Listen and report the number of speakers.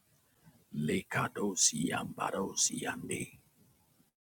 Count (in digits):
1